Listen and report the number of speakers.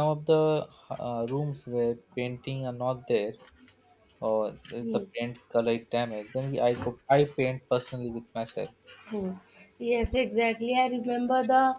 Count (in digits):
2